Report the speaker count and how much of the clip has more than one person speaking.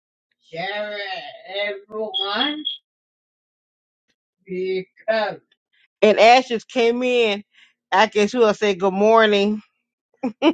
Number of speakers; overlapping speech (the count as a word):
one, no overlap